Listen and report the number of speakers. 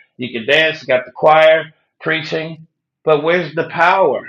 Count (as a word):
one